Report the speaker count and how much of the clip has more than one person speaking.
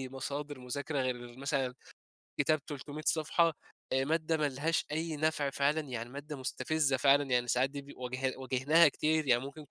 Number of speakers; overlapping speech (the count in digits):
1, no overlap